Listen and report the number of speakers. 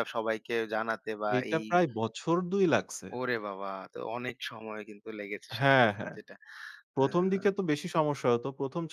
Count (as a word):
two